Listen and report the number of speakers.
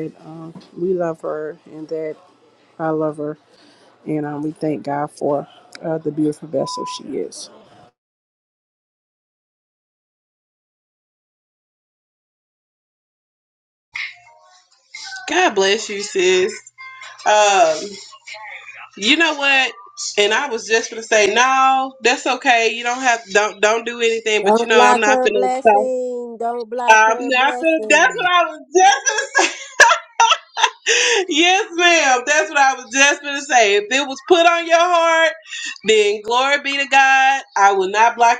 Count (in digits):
3